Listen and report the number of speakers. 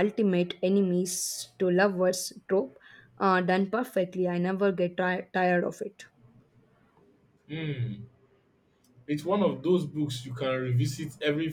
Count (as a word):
two